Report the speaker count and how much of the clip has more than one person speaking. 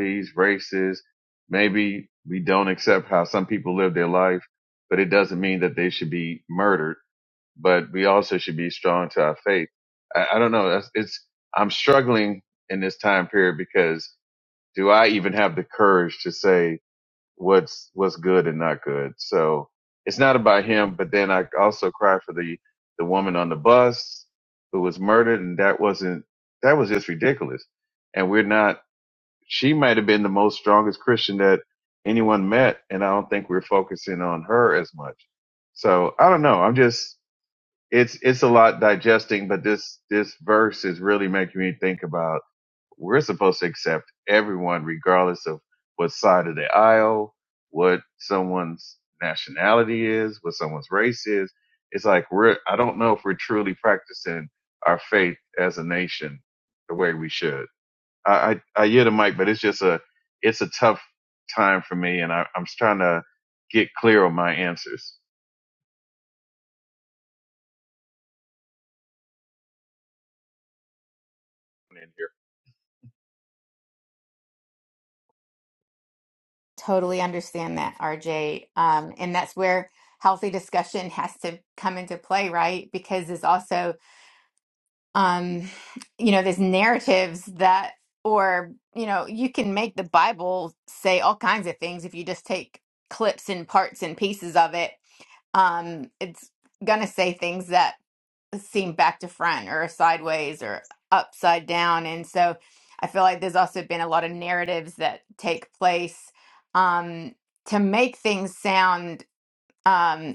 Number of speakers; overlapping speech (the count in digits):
2, no overlap